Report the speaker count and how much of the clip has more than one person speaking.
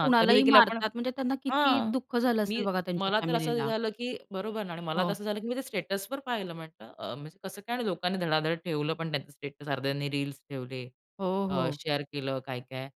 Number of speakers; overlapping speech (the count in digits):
2, about 23%